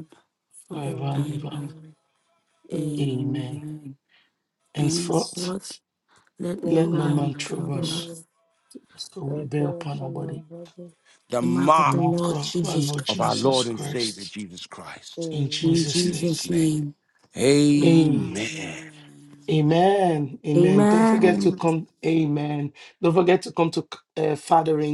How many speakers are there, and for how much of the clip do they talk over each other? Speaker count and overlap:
4, about 47%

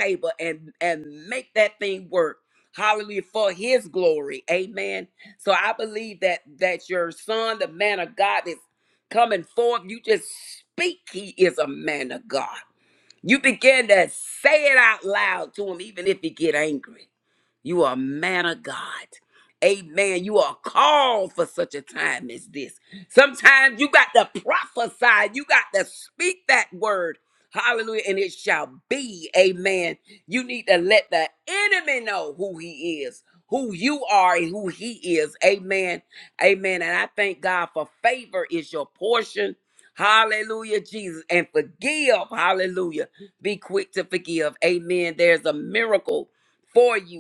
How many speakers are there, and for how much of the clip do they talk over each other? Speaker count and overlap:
1, no overlap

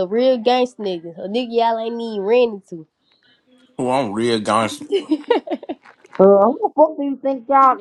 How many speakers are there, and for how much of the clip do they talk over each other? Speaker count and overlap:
3, no overlap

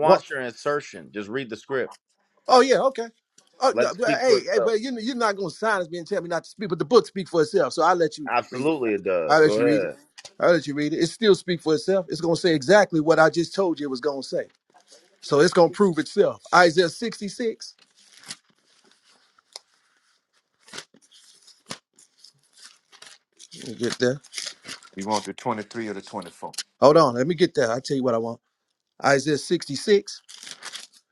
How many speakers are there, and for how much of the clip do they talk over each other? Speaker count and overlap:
3, about 7%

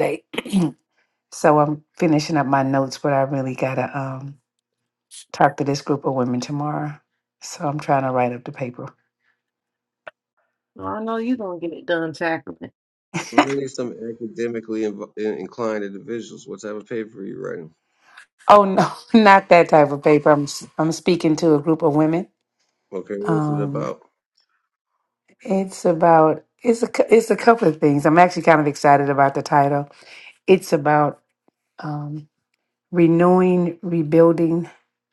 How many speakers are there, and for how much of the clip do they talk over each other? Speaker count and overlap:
3, about 2%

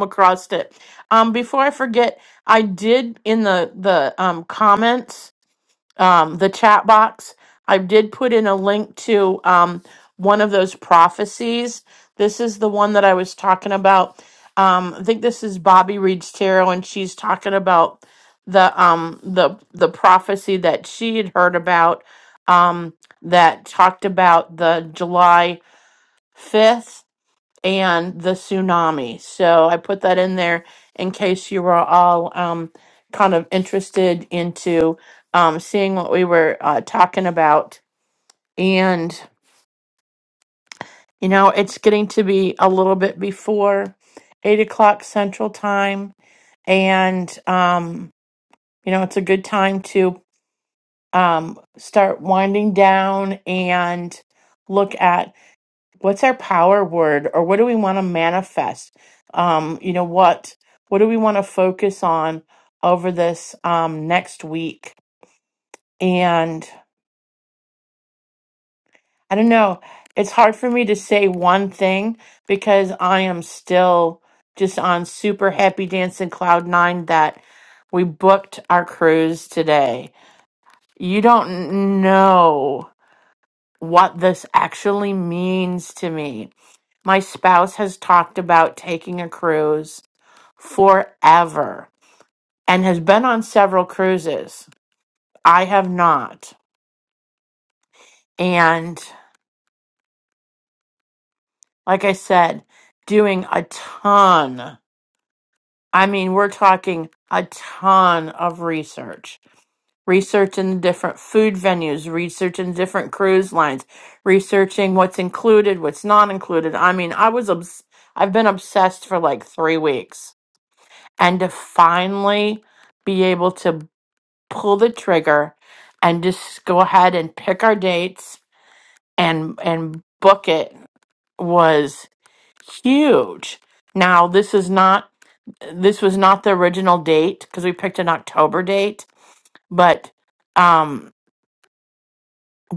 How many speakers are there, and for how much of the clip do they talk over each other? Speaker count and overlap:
1, no overlap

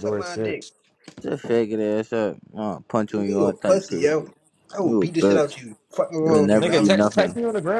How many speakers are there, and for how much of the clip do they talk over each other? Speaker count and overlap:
3, about 45%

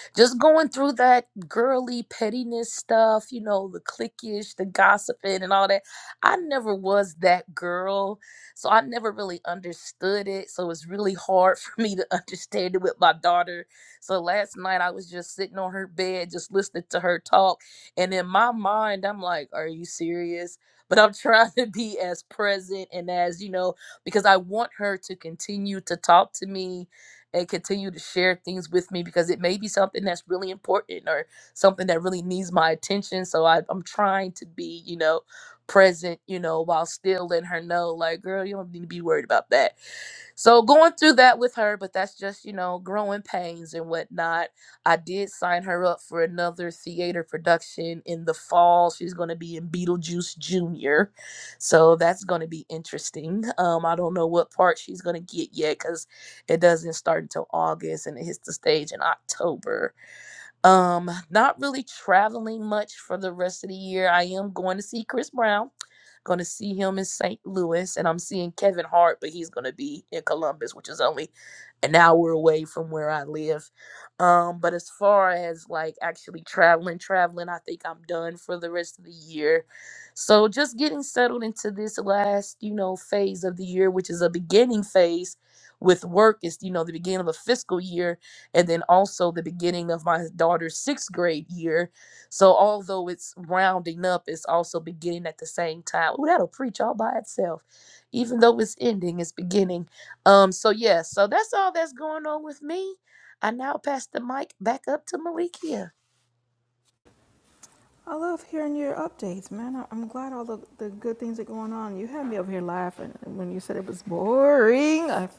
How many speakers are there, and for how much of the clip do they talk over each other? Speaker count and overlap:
2, no overlap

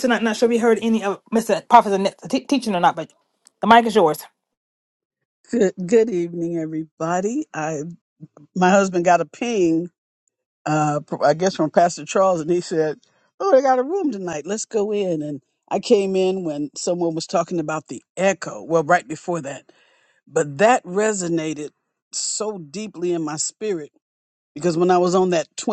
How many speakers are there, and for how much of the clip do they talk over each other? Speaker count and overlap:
2, no overlap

